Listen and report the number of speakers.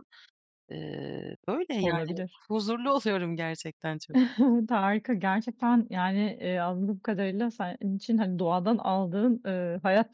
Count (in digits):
2